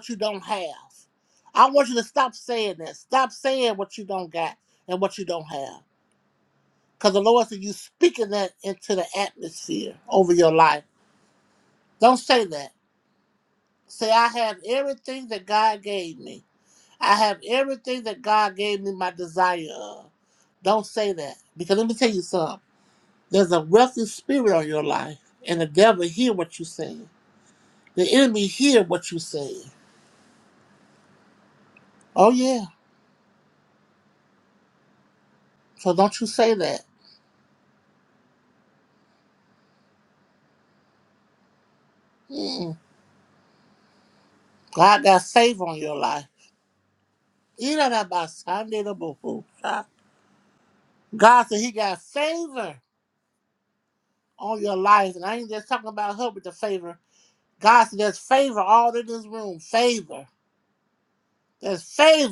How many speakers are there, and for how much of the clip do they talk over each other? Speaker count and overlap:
one, no overlap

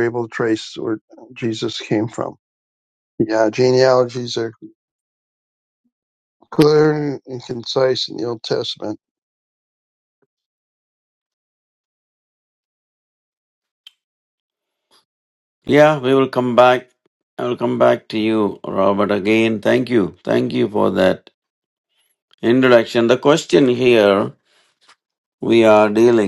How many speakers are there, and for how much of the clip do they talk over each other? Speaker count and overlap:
two, no overlap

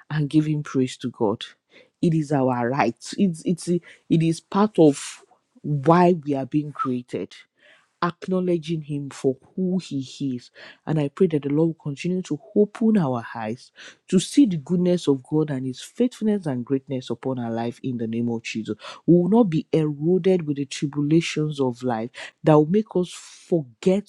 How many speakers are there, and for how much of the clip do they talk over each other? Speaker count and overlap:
one, no overlap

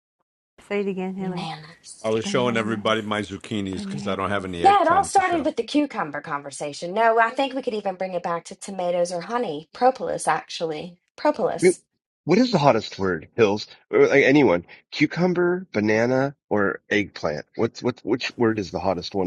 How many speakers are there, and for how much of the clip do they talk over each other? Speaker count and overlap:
four, about 12%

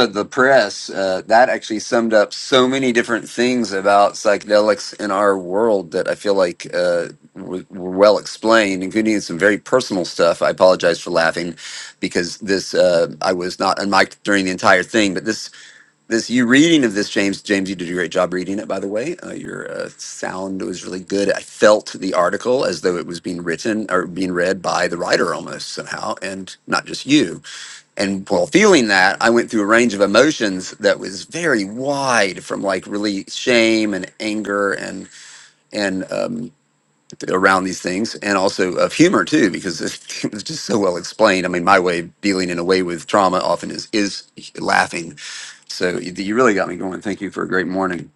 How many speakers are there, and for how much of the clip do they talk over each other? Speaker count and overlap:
one, no overlap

